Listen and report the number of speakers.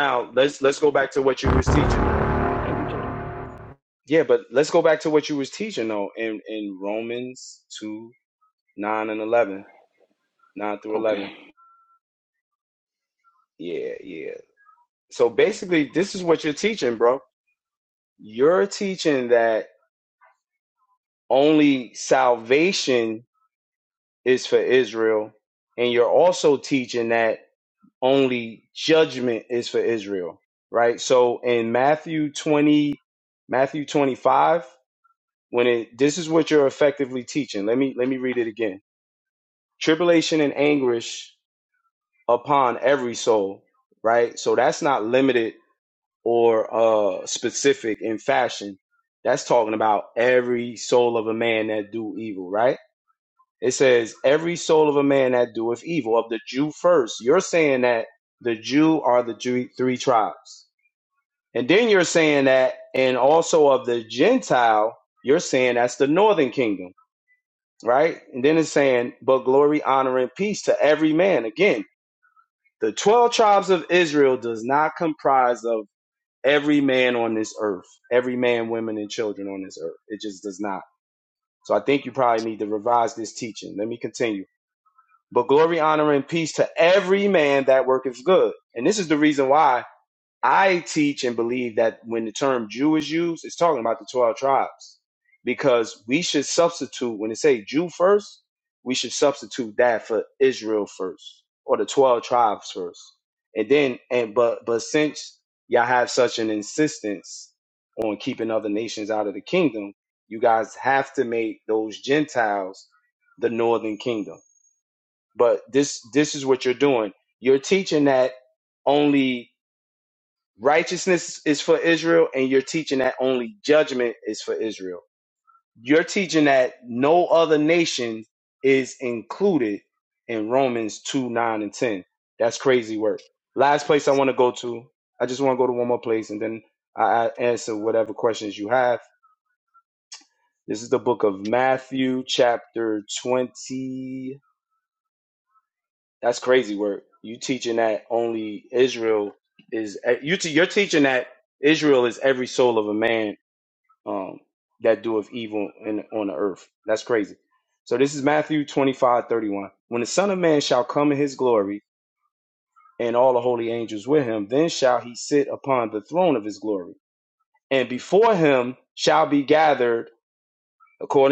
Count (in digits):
2